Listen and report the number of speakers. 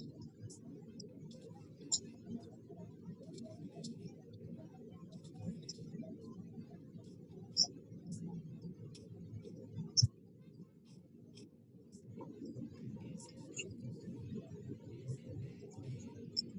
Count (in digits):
0